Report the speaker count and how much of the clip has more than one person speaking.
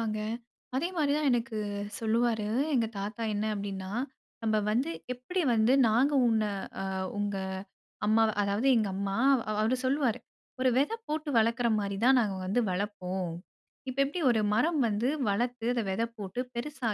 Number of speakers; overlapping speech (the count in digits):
1, no overlap